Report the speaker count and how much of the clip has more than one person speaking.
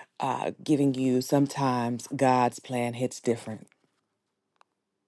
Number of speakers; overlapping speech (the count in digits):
1, no overlap